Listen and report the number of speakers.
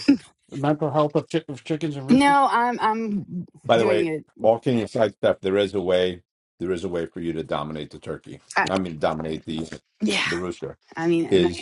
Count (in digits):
3